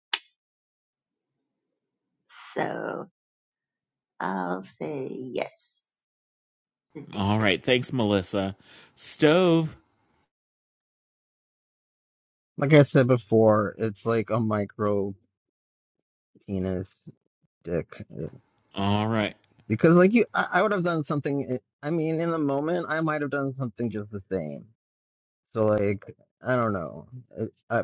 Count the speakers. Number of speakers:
three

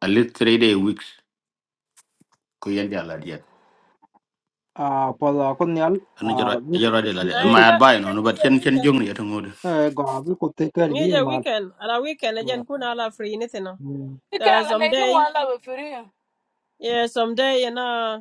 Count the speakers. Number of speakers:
four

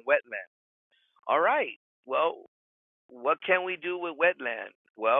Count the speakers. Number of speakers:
one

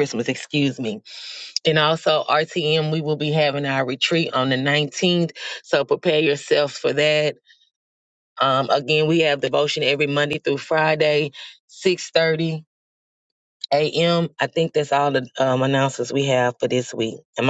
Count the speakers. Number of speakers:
one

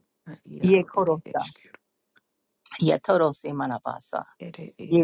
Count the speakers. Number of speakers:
two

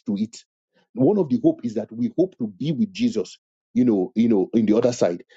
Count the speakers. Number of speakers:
one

